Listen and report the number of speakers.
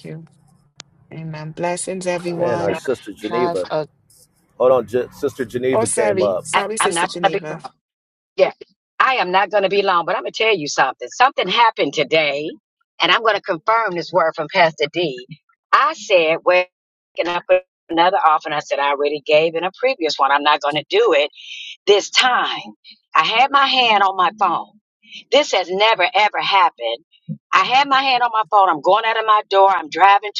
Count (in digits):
3